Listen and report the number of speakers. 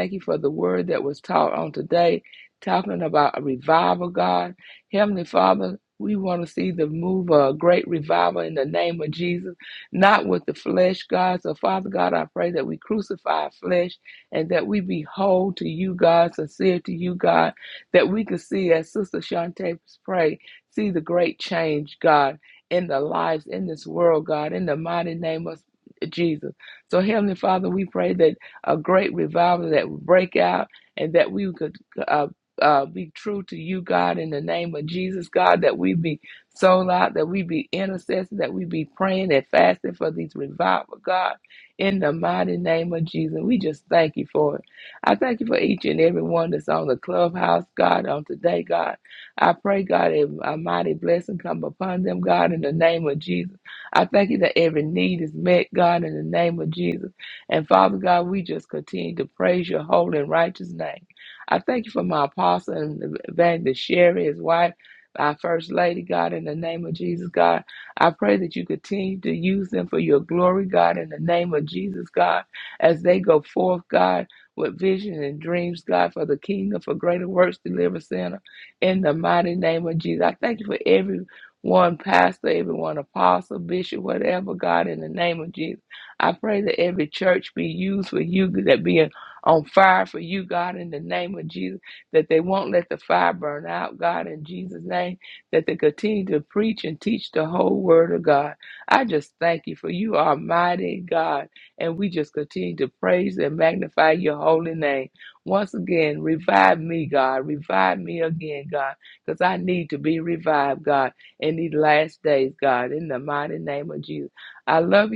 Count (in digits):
1